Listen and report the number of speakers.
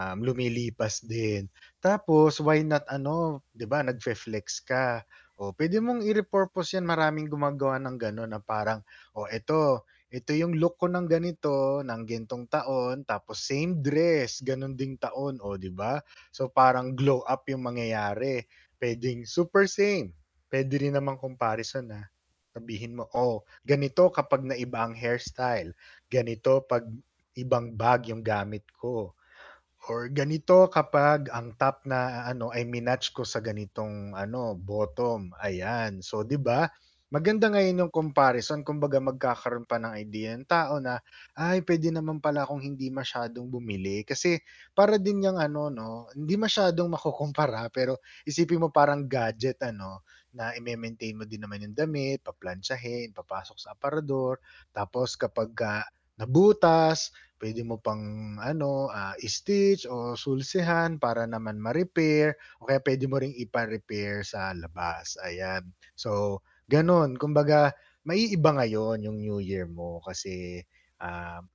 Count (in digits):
1